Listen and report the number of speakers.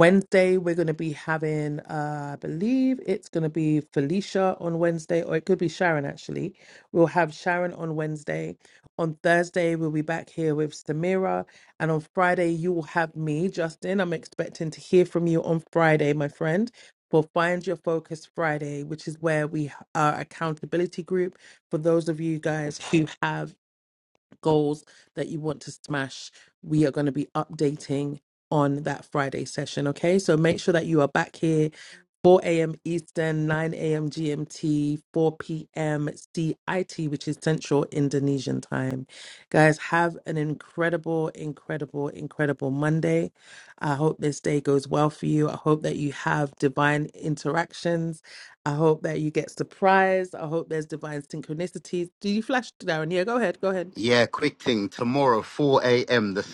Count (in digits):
2